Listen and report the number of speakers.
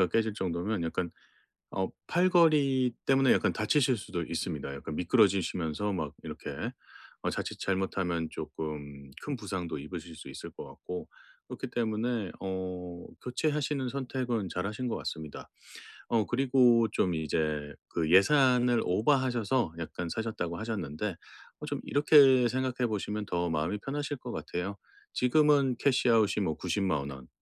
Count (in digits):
1